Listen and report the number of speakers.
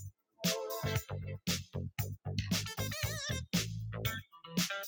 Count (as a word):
zero